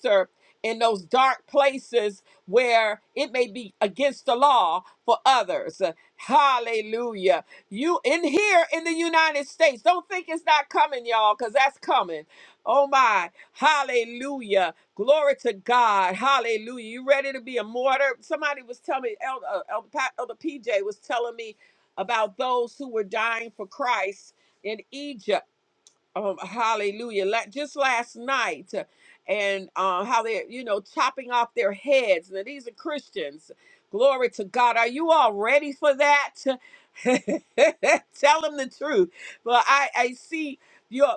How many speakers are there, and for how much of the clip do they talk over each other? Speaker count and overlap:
1, no overlap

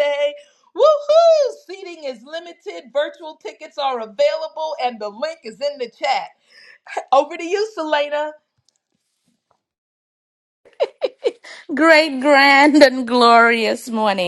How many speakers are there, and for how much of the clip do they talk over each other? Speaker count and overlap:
2, no overlap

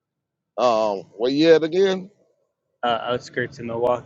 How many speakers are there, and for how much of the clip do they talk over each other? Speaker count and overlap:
2, no overlap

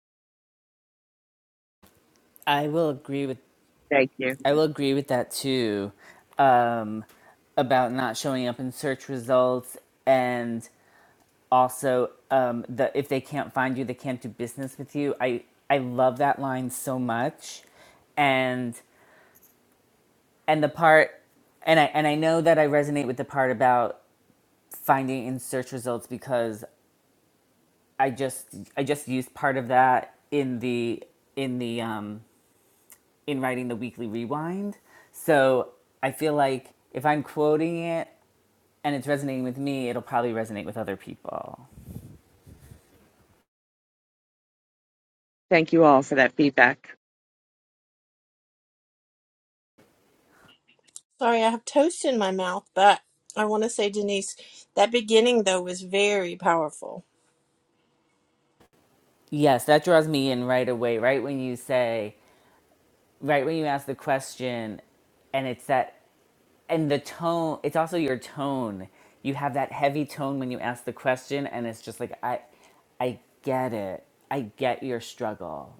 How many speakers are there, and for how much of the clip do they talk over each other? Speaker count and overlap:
3, no overlap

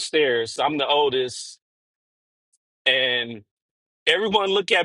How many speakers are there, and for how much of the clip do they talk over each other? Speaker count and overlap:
1, no overlap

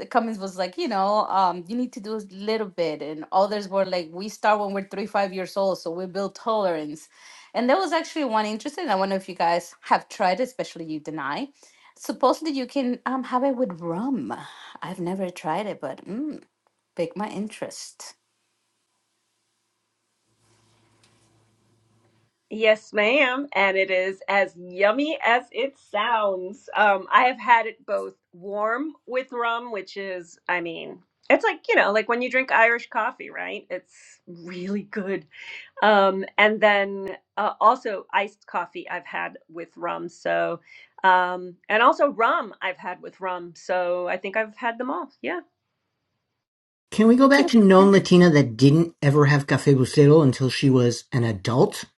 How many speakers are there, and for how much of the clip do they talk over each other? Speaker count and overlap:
3, no overlap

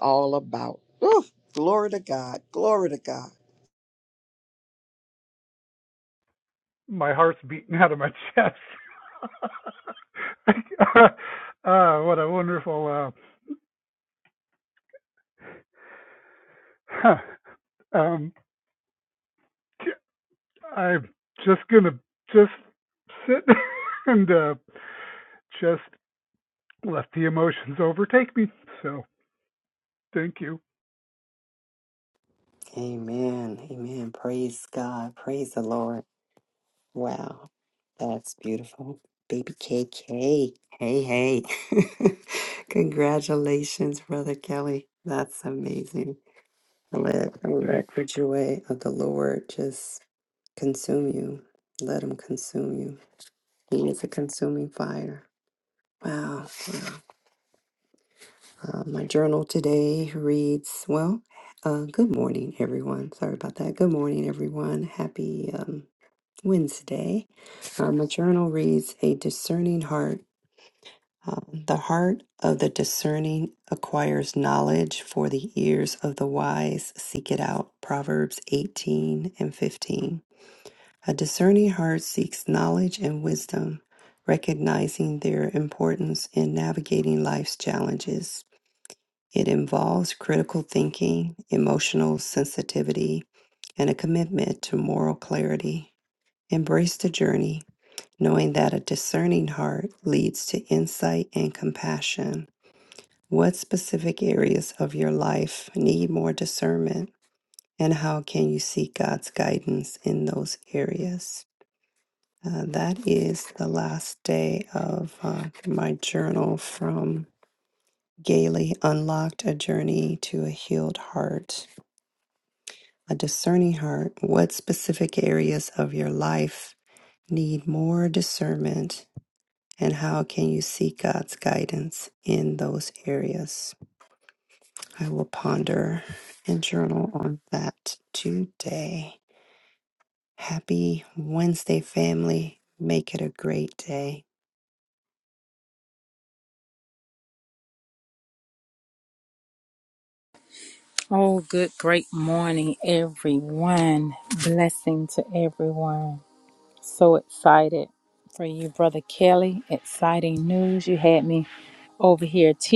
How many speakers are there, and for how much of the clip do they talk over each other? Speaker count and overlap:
4, under 1%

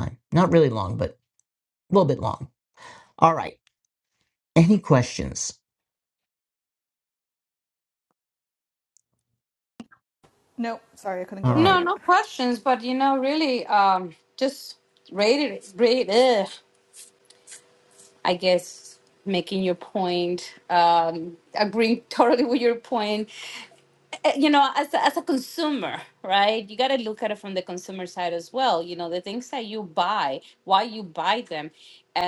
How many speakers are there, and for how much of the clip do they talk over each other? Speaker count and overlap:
3, about 2%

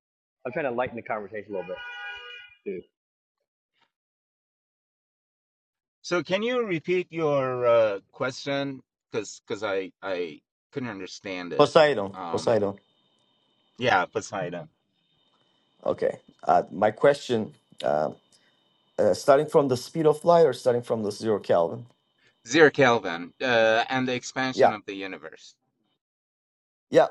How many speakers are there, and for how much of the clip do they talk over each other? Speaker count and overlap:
3, about 3%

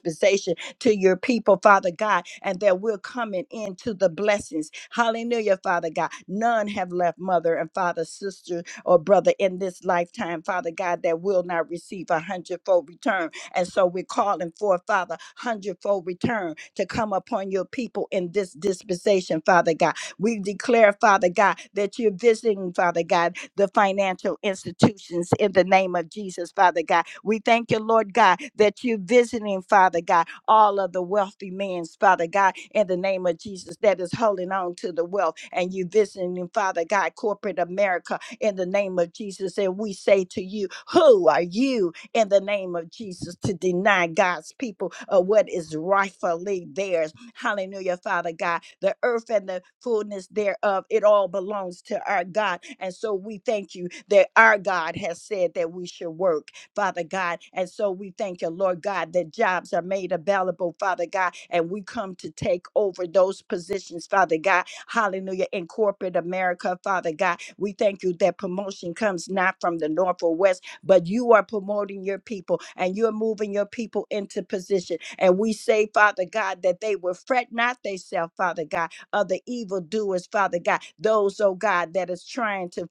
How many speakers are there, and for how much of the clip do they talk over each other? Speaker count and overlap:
1, no overlap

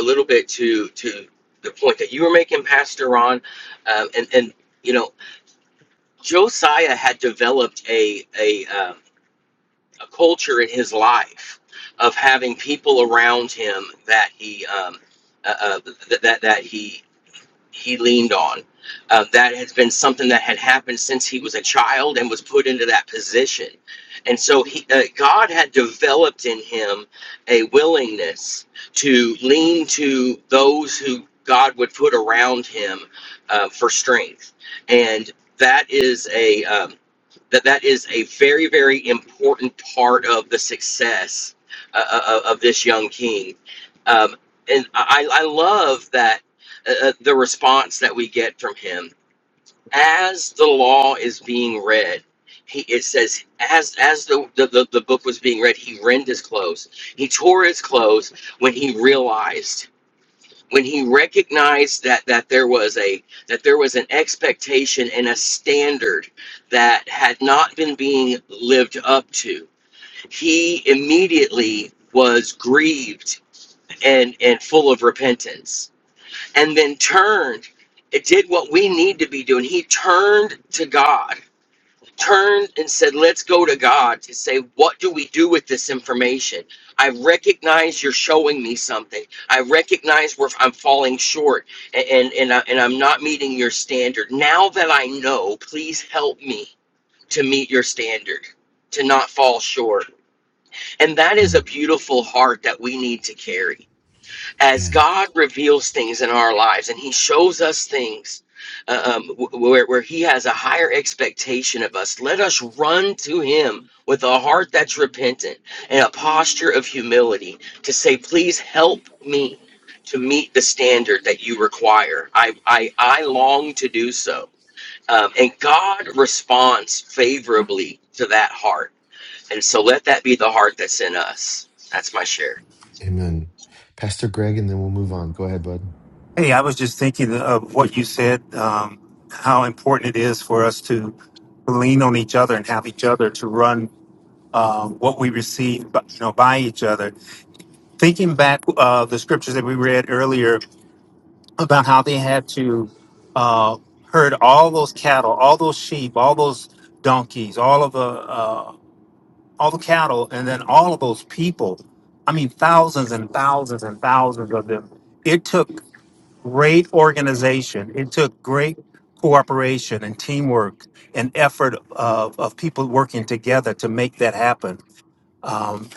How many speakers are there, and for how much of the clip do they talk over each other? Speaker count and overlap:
3, under 1%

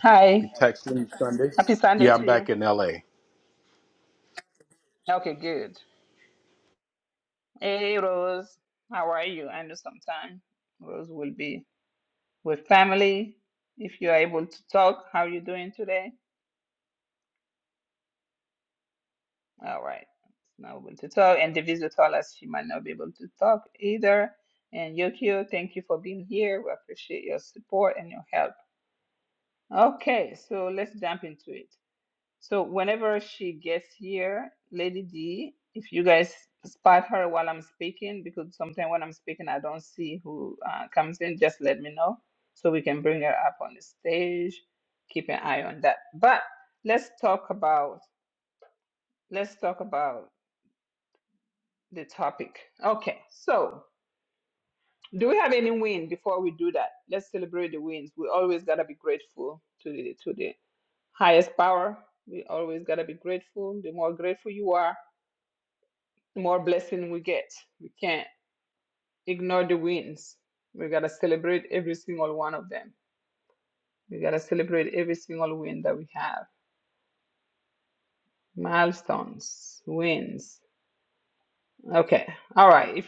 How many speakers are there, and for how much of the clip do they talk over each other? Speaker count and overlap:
2, about 1%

